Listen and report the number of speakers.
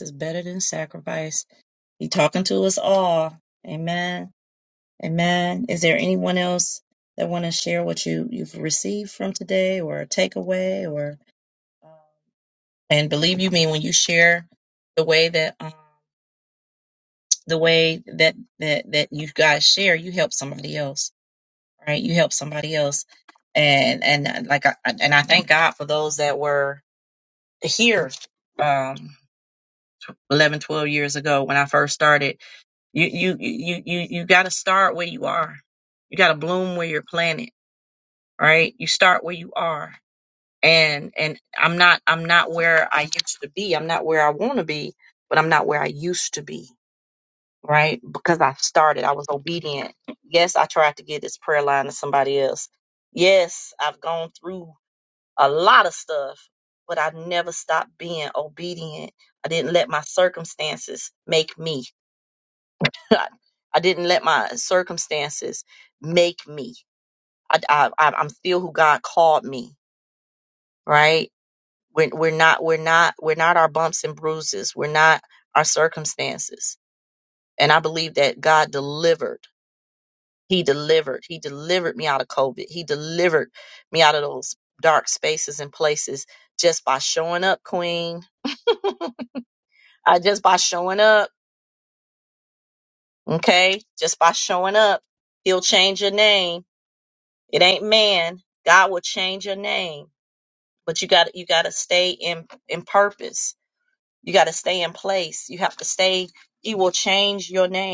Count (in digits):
1